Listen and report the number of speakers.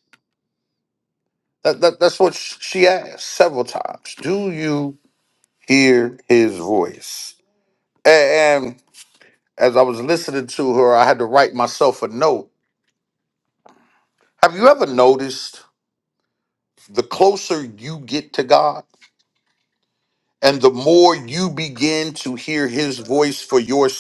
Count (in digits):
1